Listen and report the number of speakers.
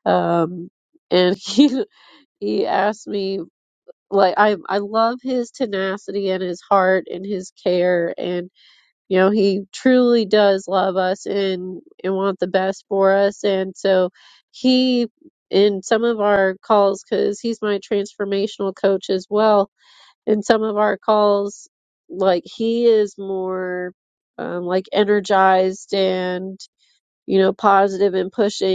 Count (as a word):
one